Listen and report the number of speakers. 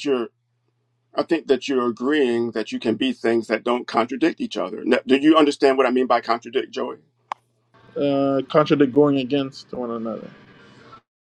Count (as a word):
two